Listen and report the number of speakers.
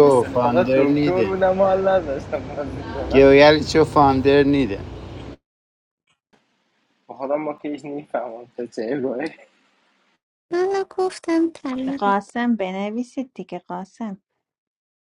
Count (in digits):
4